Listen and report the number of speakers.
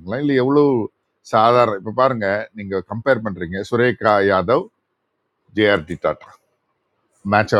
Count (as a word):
one